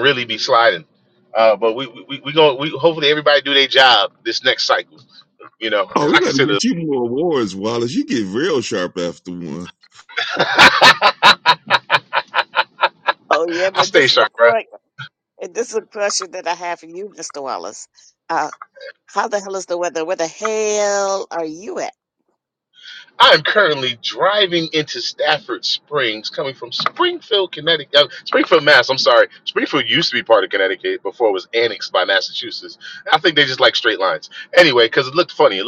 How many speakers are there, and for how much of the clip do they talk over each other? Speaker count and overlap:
3, about 4%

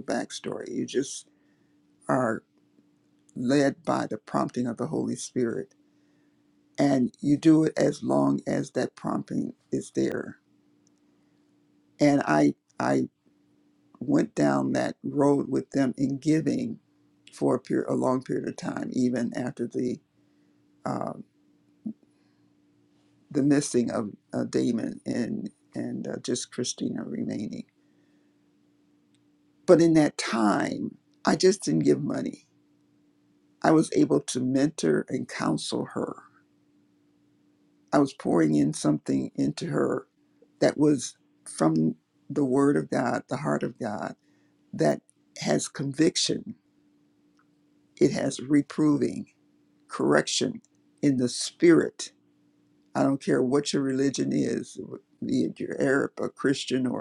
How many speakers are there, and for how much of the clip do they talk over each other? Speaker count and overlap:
1, no overlap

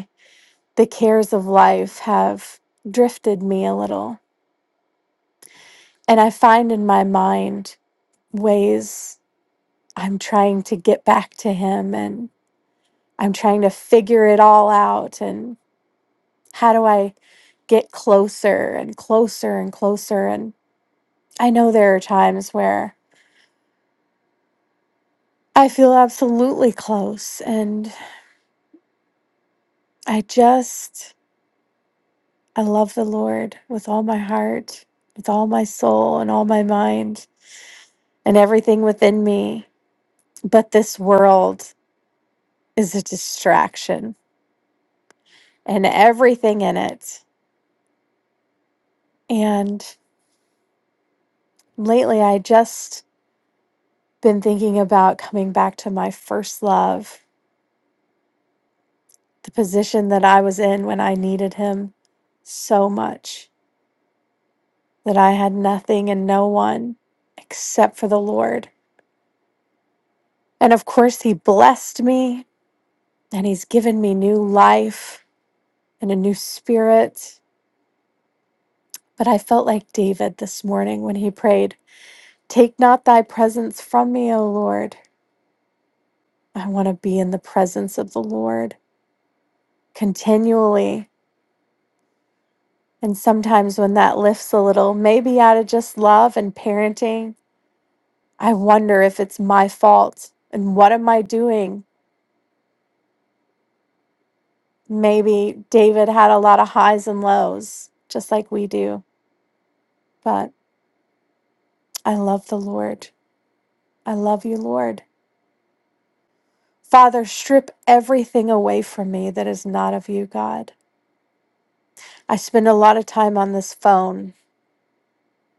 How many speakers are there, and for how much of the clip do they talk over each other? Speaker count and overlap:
1, no overlap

